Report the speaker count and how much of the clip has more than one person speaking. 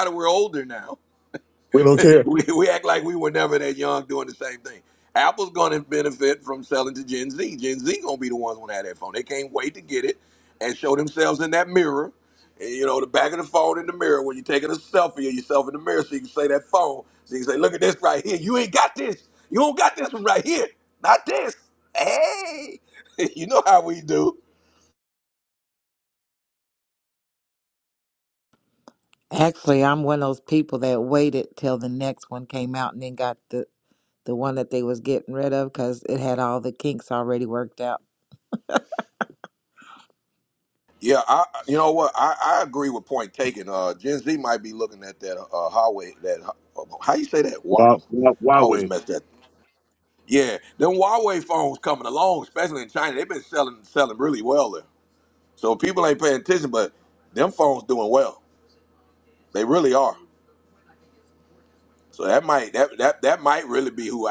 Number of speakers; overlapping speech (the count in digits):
3, about 1%